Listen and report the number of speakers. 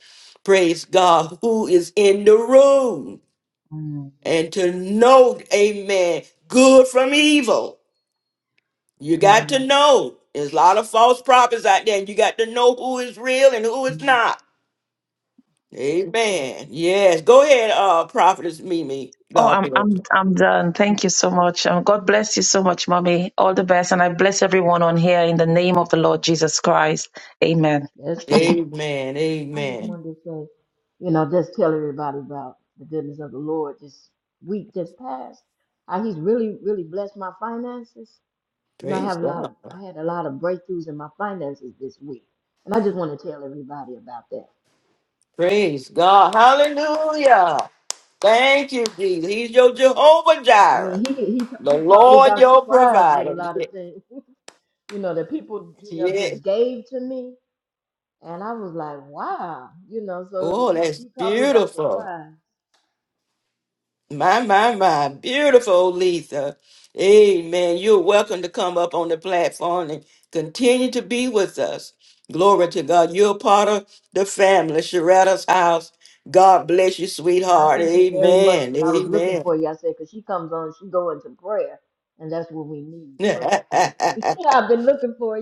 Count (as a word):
three